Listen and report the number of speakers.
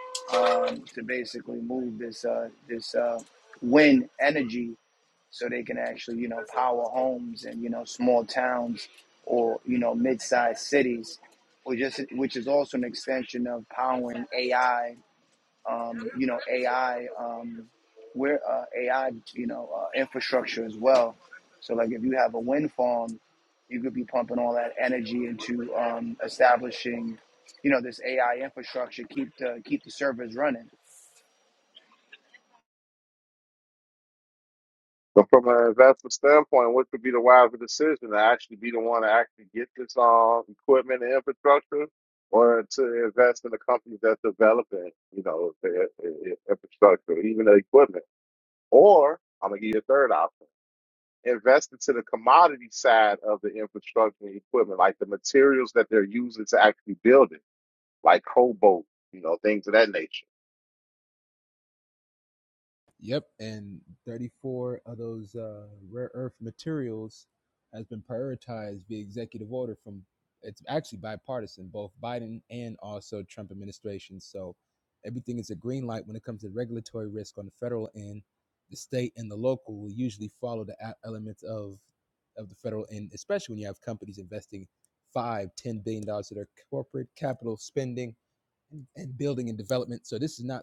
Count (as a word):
three